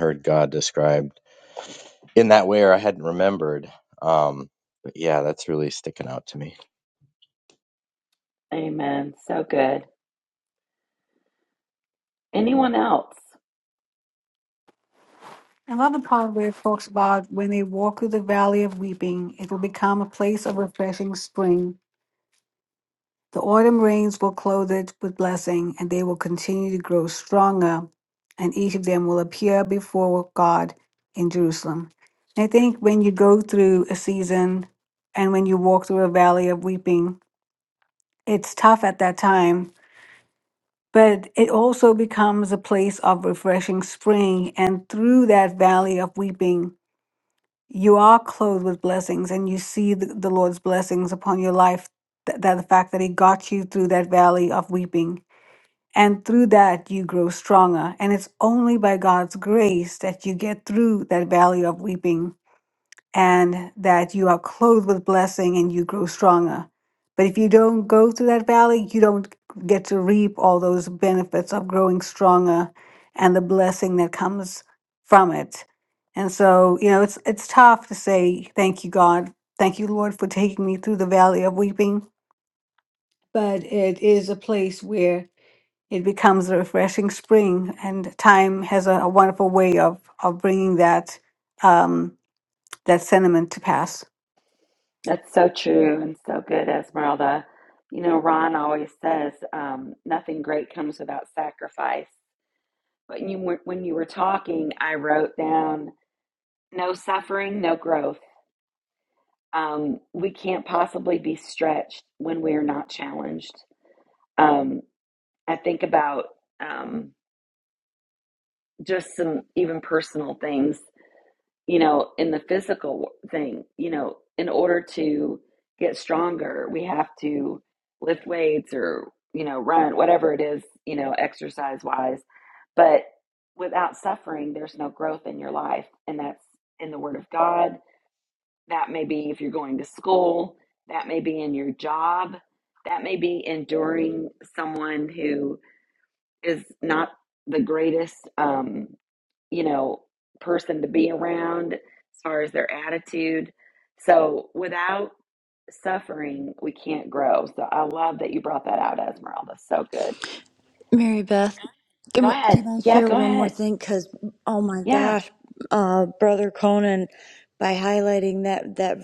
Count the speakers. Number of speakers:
4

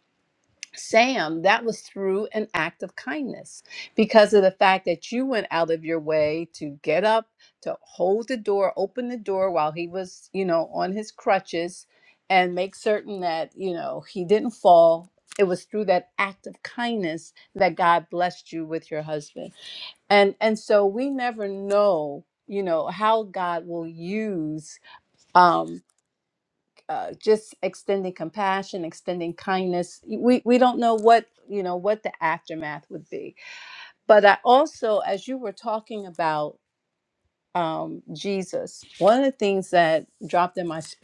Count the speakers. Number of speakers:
1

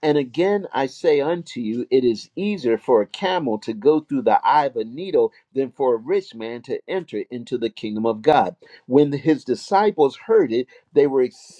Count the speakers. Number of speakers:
1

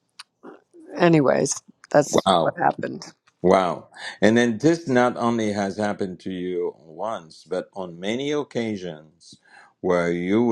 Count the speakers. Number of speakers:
2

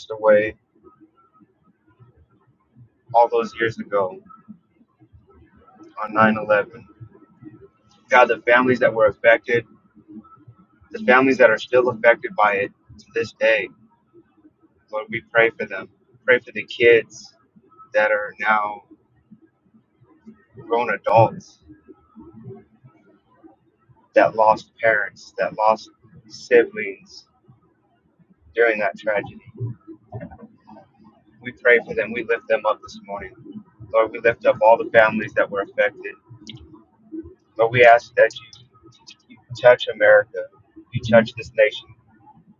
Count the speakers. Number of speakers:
1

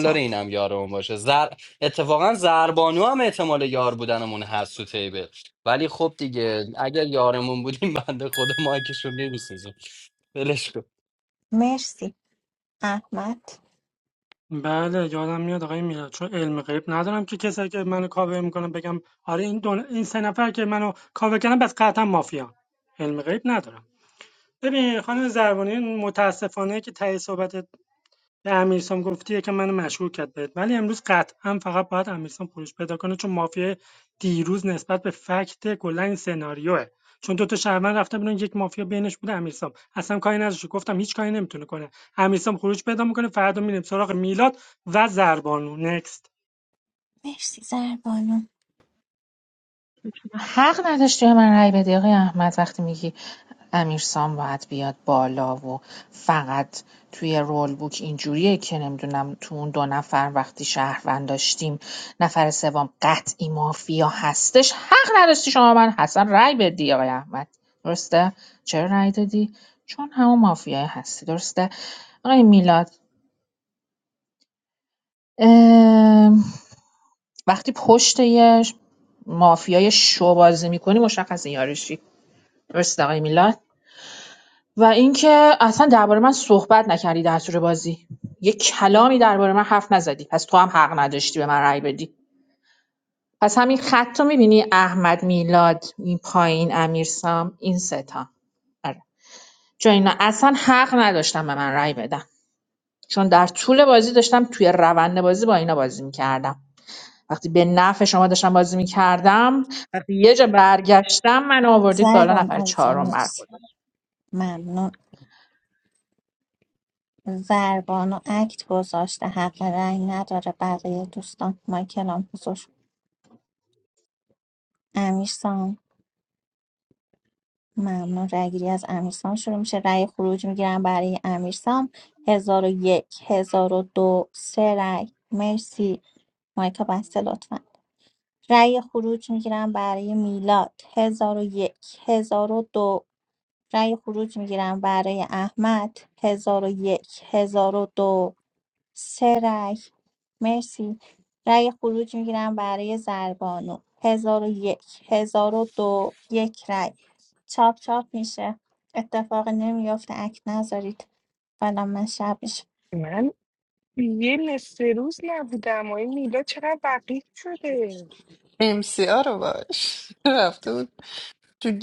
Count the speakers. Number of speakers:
6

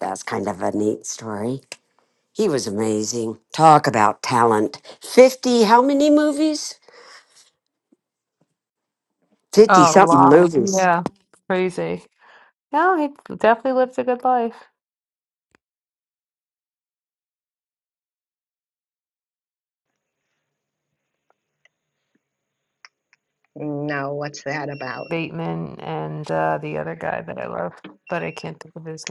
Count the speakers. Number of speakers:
3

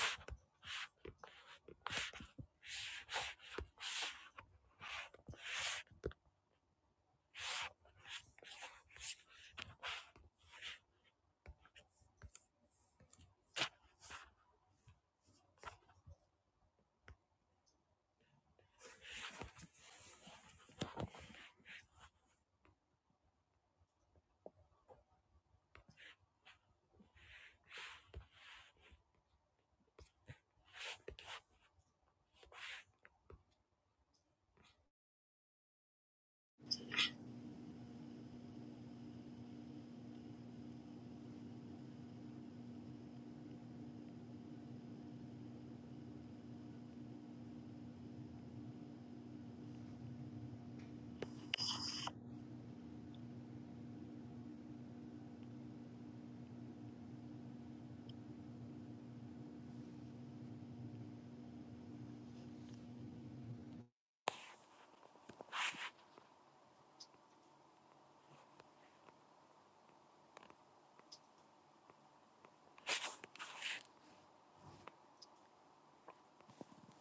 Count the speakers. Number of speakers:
0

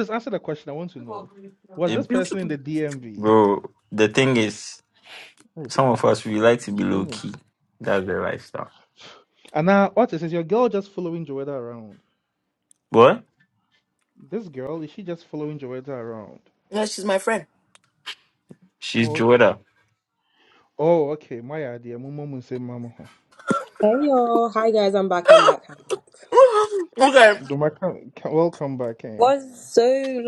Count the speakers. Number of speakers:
4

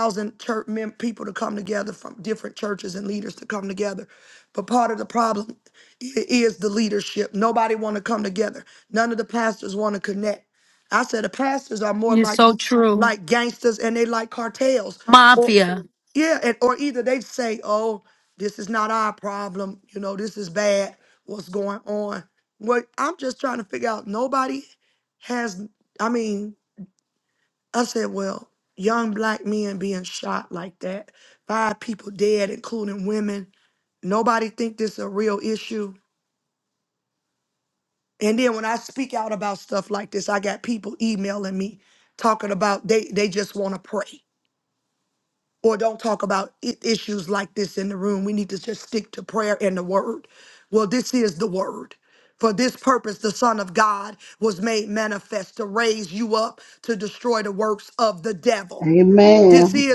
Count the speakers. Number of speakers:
3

